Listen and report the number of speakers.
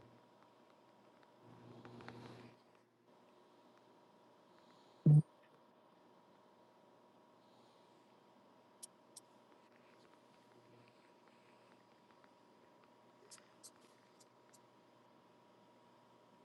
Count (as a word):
zero